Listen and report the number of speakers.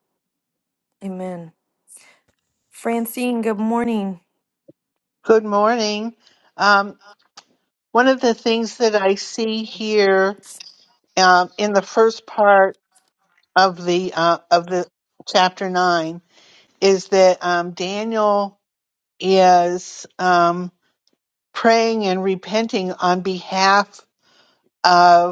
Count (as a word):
two